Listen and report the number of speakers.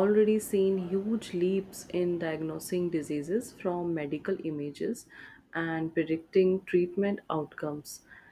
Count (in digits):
1